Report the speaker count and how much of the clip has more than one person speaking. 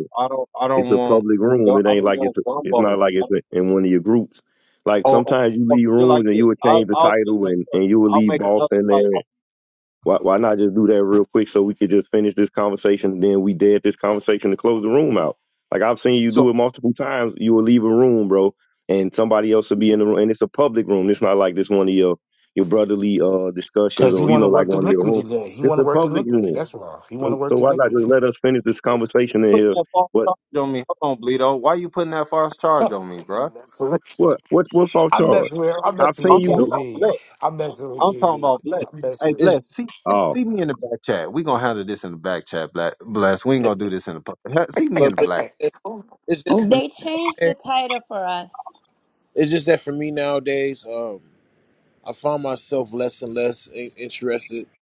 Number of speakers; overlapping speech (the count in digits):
5, about 22%